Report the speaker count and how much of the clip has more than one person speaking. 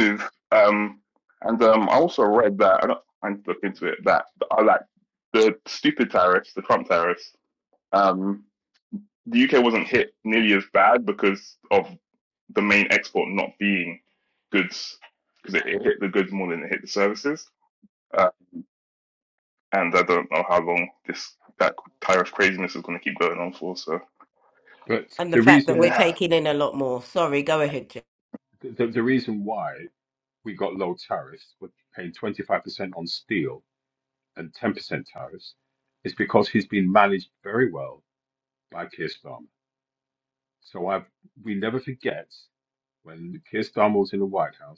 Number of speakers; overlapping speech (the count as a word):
three, about 2%